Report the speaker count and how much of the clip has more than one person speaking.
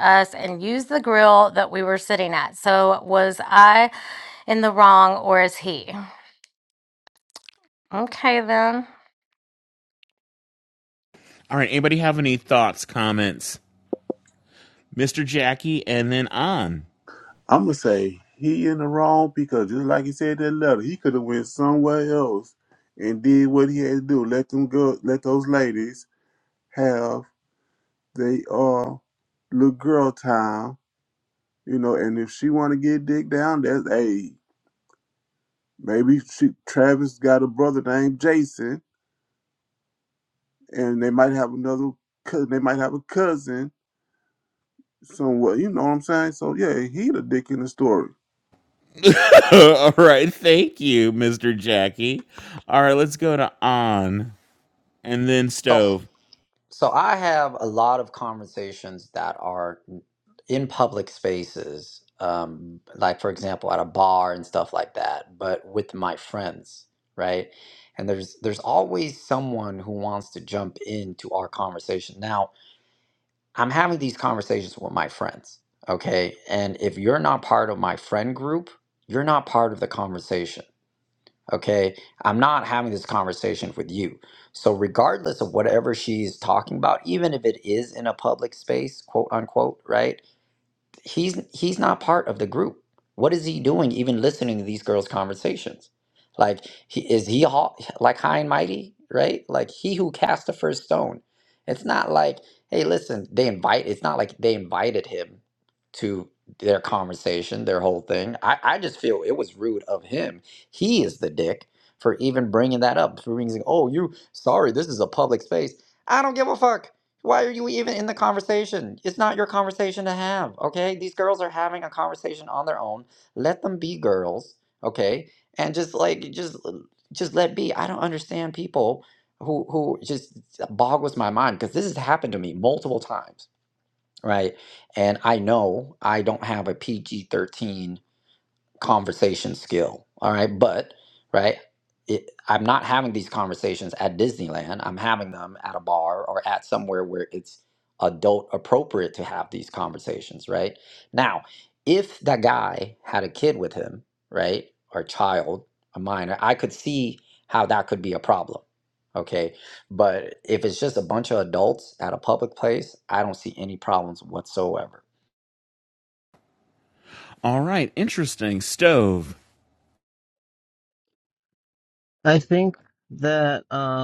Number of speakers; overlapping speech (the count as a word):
five, under 1%